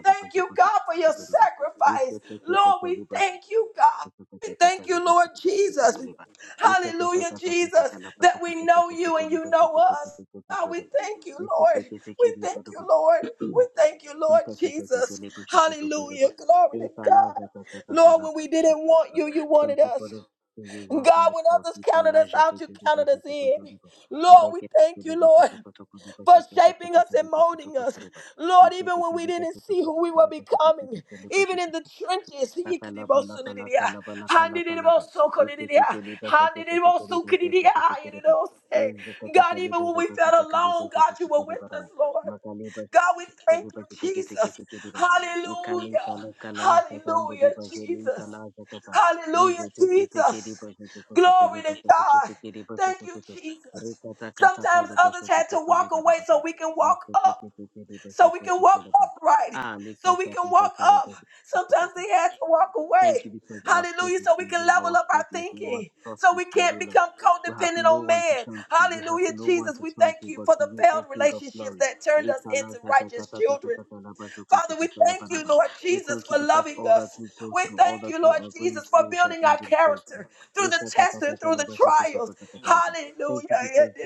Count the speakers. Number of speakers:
two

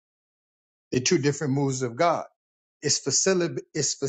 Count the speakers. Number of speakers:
one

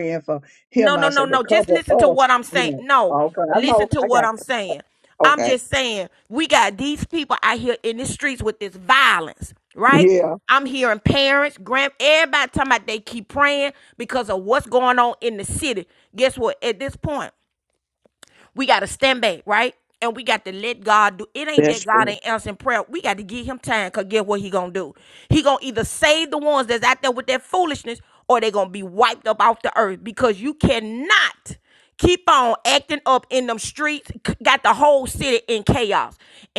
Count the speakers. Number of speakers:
two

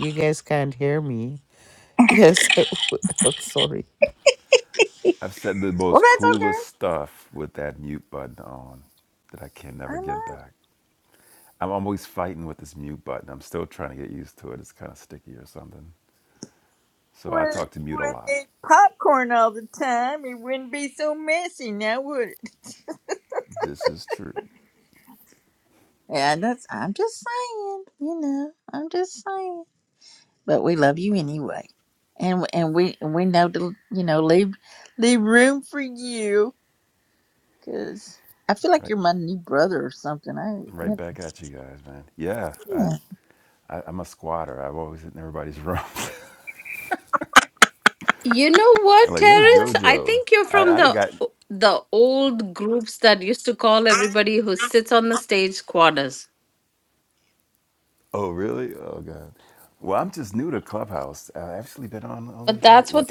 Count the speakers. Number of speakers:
four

